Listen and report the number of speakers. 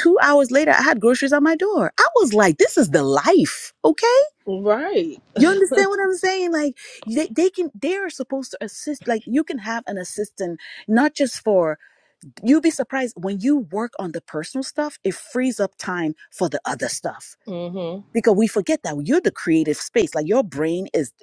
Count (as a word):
two